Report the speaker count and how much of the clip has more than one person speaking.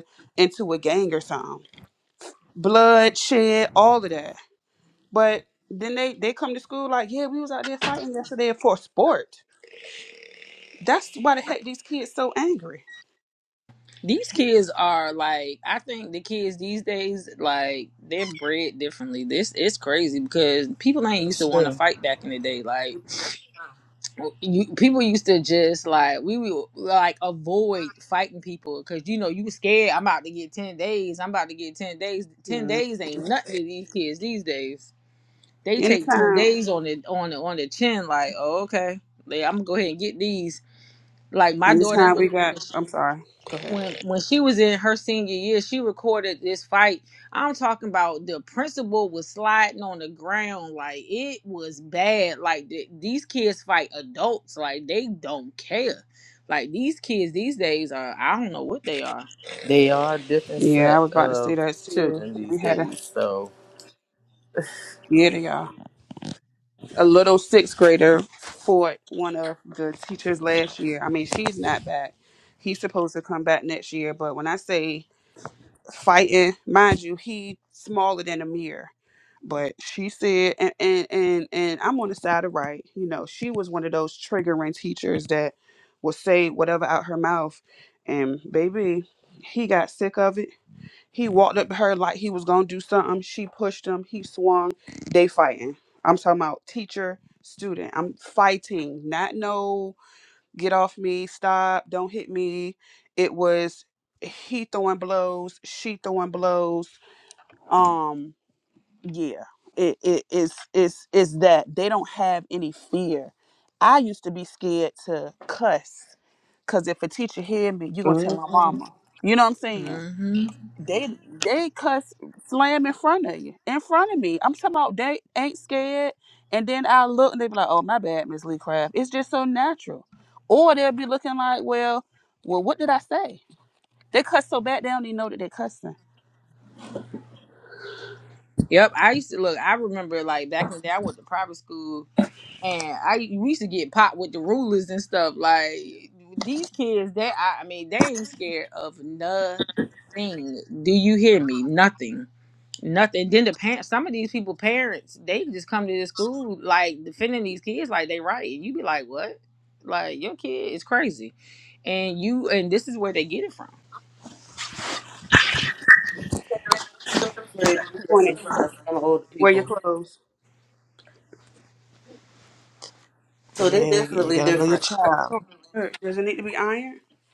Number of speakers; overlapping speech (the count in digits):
5, about 5%